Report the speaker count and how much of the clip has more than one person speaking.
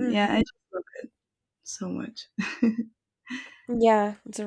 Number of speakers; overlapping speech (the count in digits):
2, about 10%